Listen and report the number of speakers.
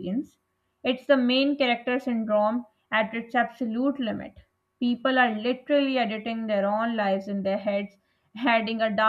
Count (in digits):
1